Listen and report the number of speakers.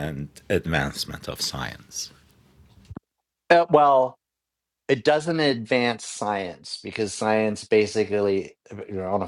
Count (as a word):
two